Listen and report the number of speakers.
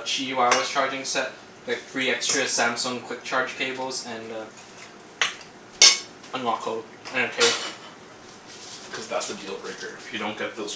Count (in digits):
2